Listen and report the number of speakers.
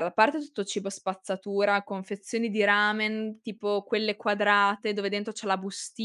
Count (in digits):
1